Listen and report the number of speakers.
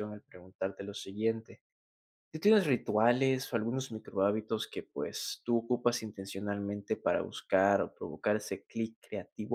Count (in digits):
1